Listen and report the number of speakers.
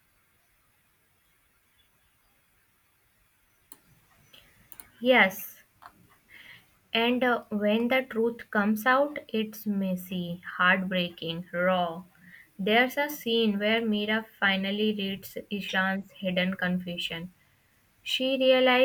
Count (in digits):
1